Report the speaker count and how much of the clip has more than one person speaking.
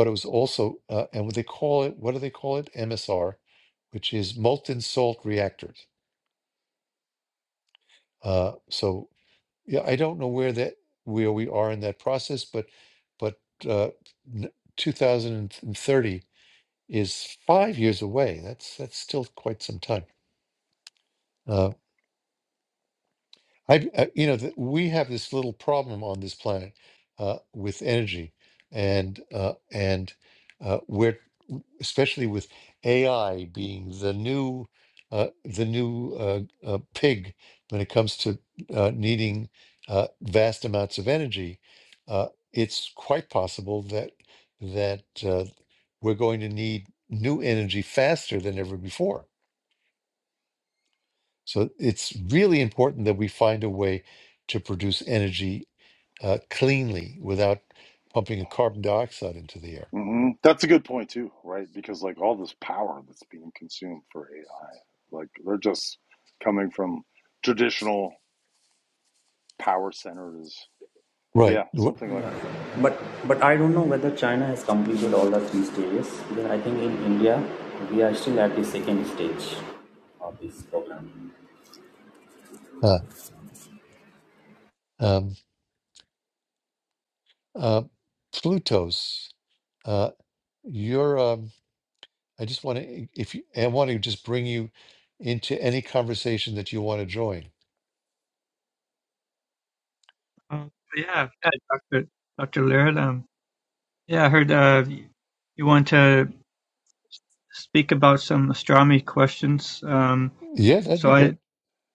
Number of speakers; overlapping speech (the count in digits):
4, about 1%